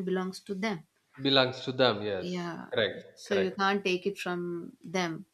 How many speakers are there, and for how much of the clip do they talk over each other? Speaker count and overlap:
2, about 9%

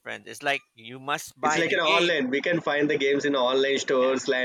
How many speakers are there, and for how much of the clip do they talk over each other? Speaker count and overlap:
2, about 20%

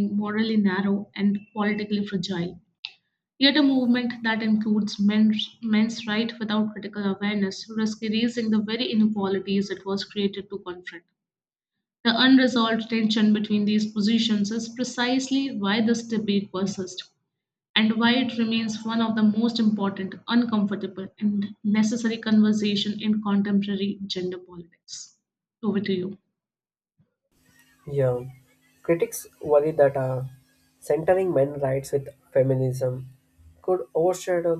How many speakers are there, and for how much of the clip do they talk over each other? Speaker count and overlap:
2, no overlap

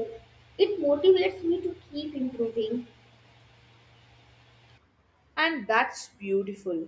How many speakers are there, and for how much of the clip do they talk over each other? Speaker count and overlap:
2, no overlap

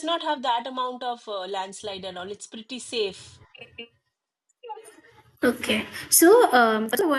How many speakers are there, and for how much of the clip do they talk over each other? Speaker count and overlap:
2, no overlap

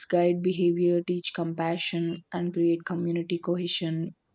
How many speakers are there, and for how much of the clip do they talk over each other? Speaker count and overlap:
1, no overlap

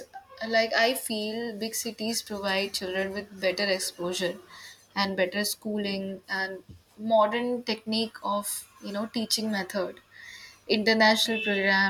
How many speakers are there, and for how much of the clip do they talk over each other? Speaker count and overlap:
1, no overlap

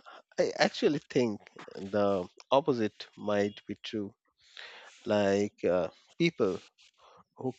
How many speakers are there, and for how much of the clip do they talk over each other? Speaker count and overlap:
1, no overlap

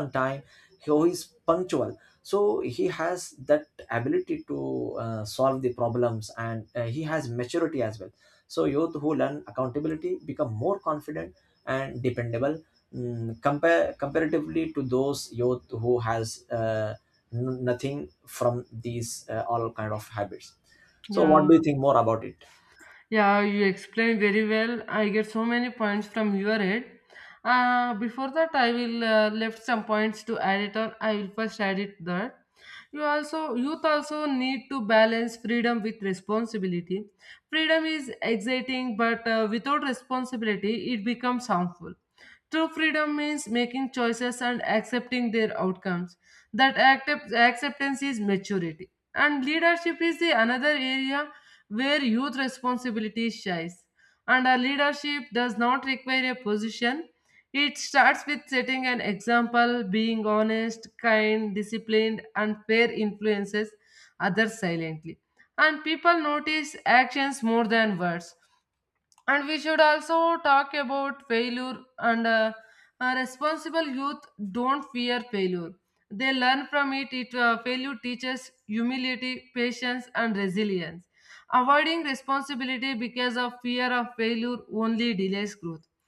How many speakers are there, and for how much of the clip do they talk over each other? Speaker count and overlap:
2, under 1%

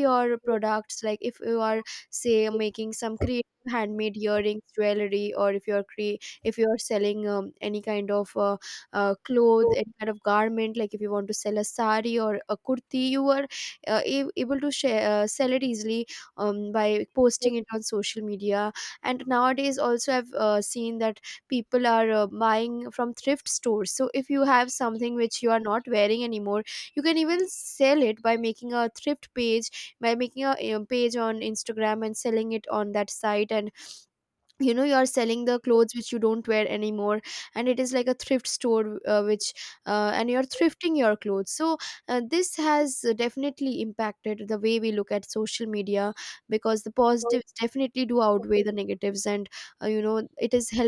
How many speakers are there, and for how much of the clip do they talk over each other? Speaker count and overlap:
1, no overlap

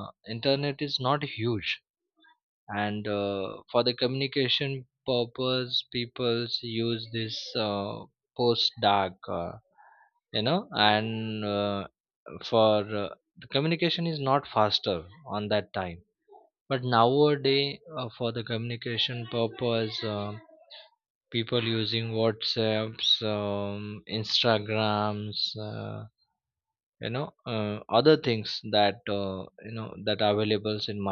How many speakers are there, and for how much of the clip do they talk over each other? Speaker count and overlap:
1, no overlap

